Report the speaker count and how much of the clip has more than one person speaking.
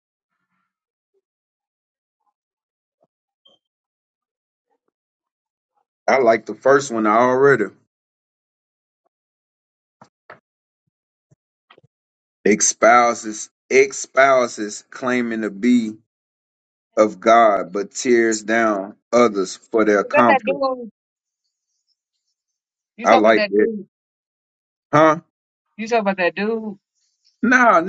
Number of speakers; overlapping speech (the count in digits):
2, about 4%